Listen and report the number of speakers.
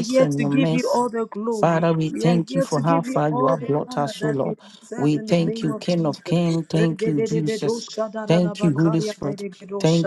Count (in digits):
2